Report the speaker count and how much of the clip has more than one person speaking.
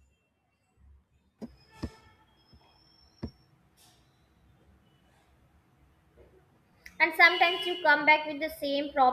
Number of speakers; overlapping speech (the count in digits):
1, no overlap